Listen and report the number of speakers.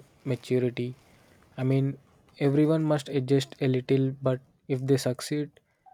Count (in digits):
1